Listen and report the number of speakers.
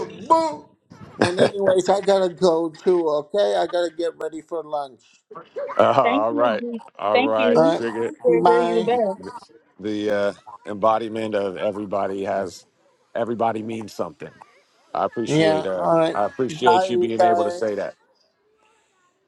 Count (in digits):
3